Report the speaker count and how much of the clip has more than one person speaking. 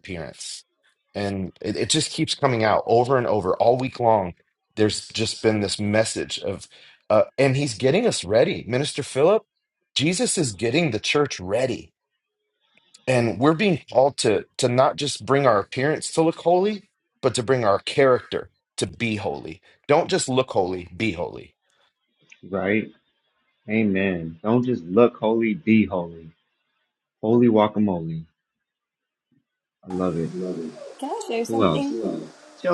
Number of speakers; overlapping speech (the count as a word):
three, about 1%